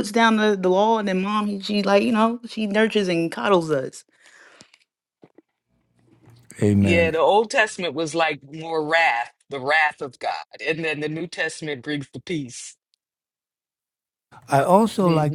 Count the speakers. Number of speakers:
three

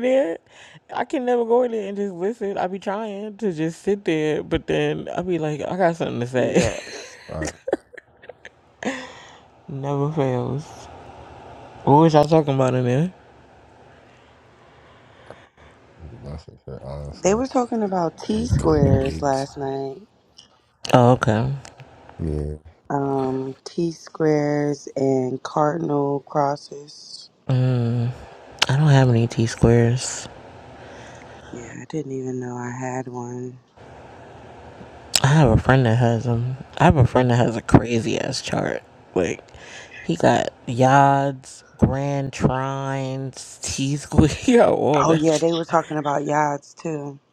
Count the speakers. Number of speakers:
three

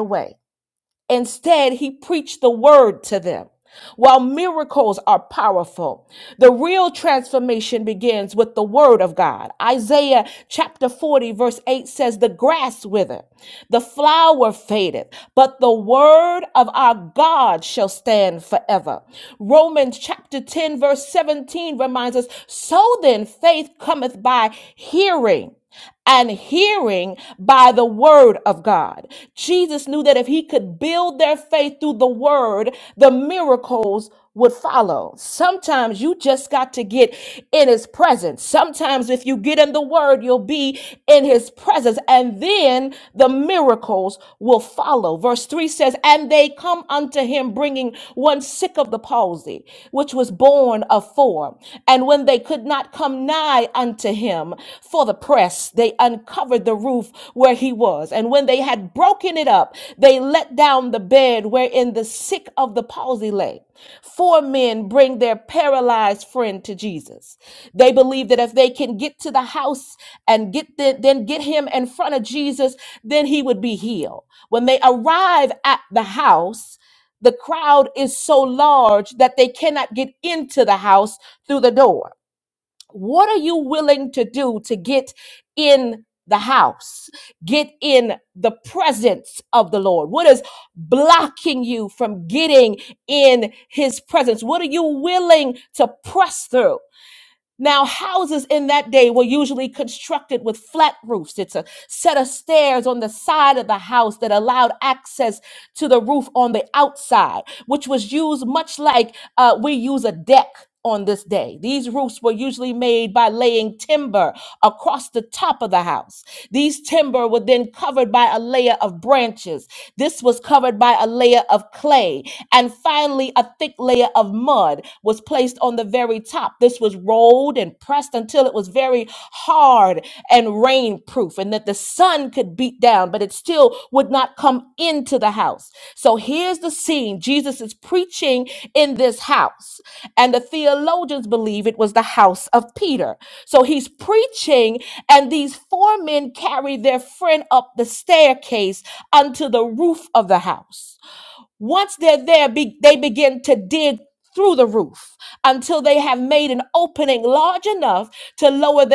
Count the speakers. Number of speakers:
one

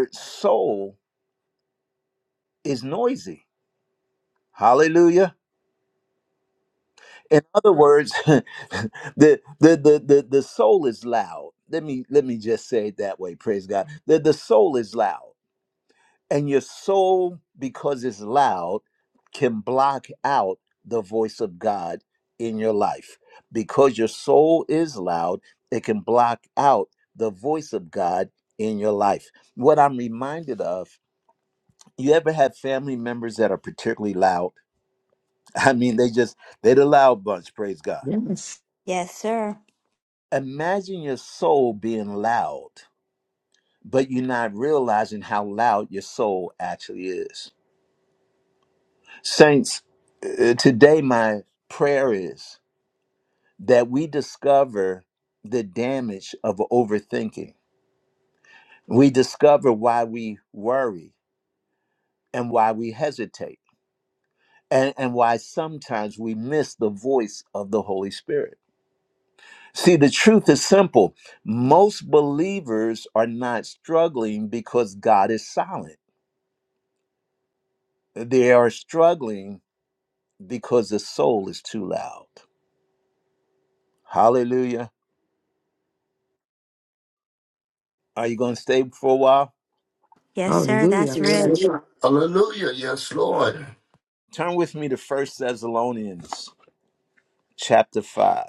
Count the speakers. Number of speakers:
four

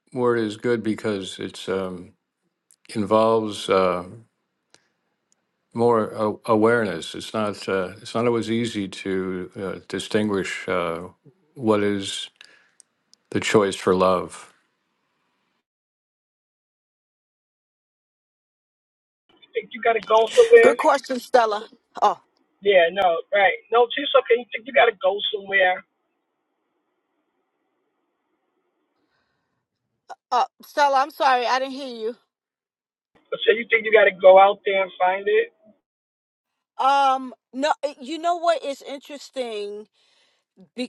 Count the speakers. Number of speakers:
three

